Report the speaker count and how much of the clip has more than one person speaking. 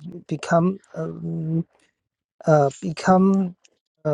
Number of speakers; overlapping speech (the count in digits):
1, no overlap